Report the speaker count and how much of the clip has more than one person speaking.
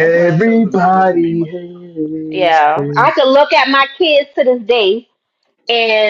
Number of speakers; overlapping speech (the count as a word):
three, about 30%